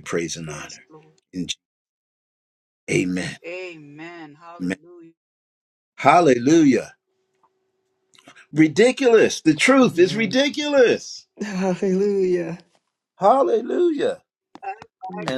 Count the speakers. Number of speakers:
3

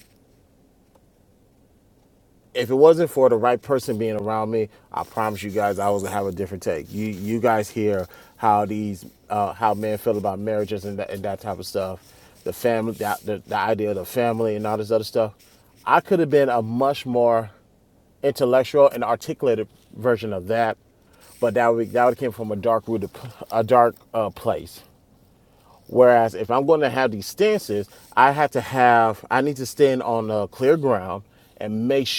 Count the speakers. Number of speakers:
1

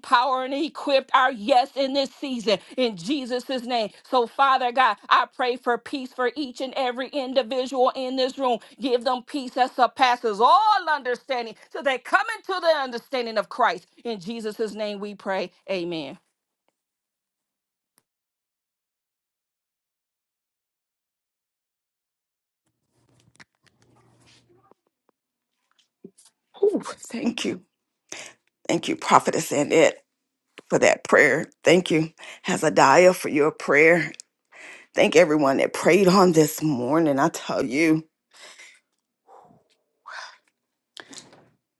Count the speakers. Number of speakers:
2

